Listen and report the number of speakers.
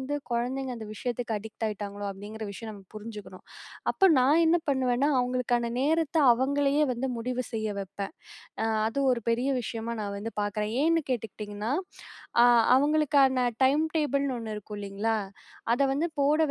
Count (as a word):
one